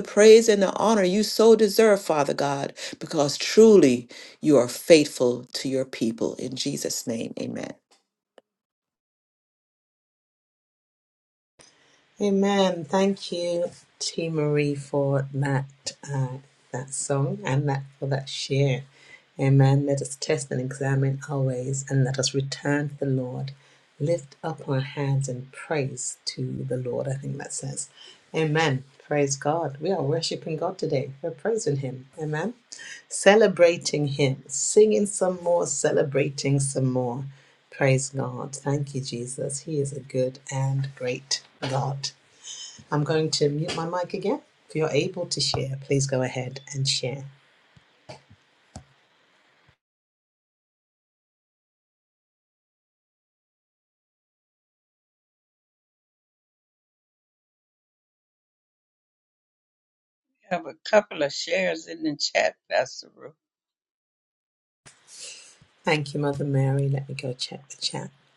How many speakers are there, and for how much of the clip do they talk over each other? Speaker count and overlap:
3, no overlap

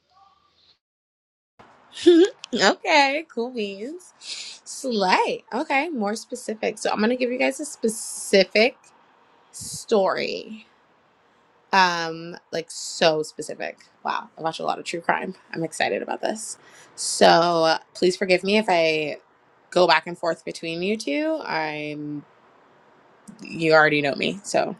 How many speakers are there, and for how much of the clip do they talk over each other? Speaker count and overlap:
1, no overlap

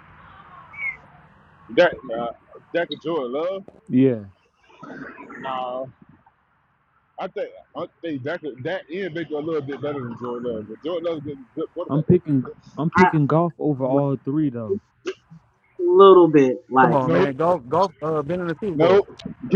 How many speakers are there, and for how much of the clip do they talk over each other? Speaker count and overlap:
4, about 8%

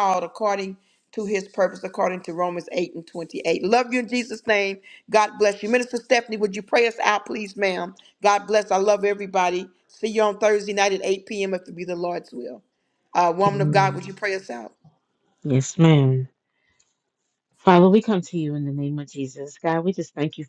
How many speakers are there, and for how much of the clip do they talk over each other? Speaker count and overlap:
2, about 3%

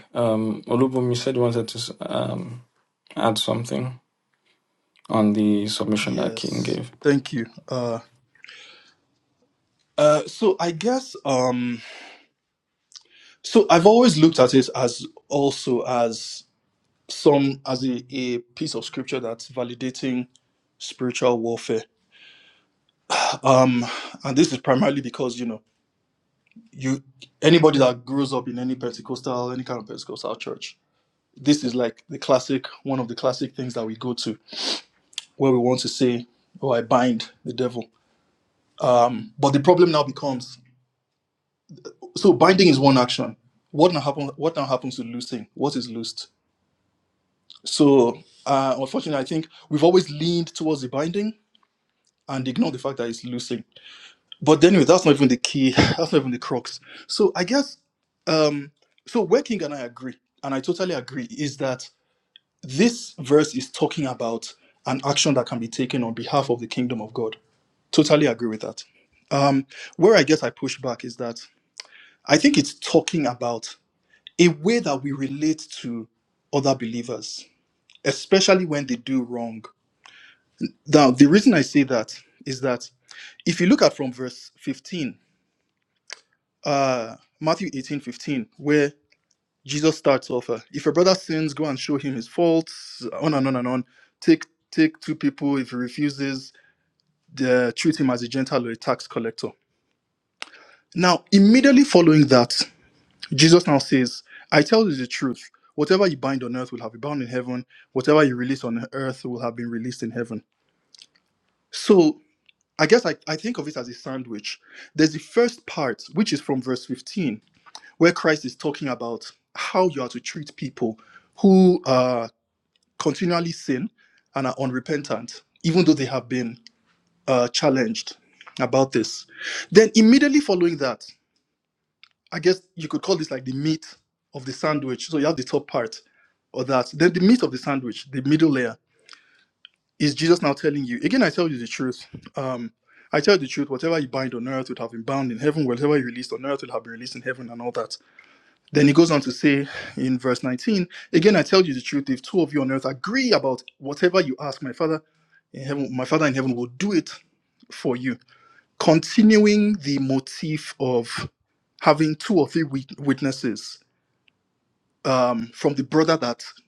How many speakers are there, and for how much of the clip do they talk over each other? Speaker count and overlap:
2, under 1%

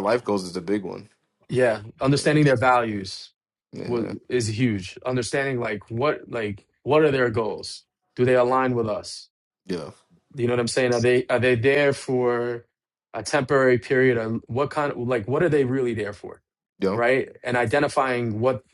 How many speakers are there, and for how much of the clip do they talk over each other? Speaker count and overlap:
2, about 2%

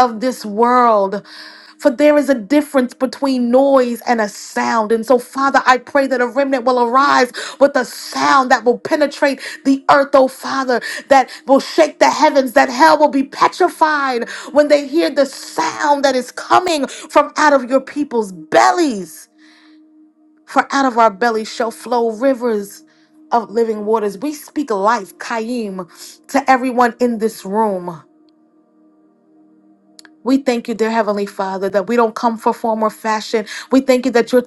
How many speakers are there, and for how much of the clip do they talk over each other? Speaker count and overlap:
1, no overlap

